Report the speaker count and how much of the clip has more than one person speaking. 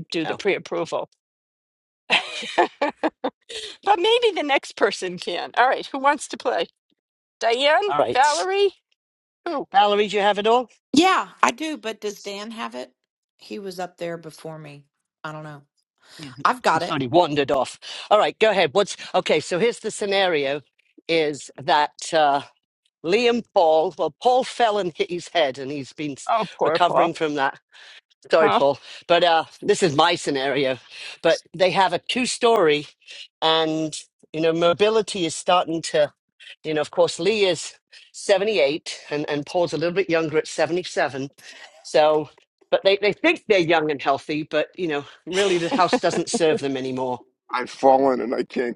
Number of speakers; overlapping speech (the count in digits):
4, about 3%